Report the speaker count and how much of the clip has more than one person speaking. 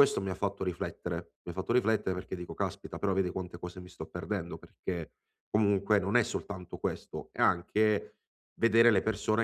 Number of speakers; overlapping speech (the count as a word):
one, no overlap